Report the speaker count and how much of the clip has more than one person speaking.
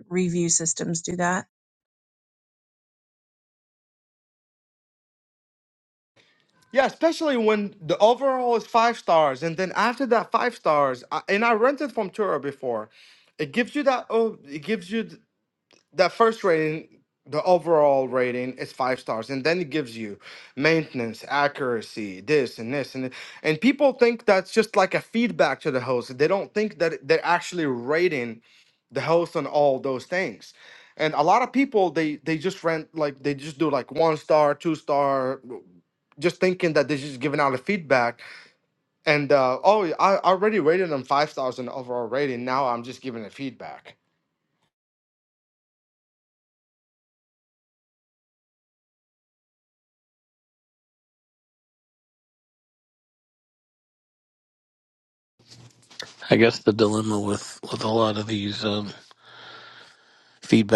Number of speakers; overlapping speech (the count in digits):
3, no overlap